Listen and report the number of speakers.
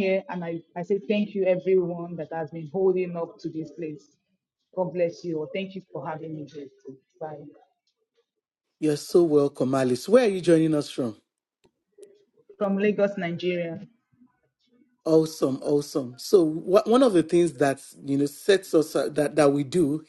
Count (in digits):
2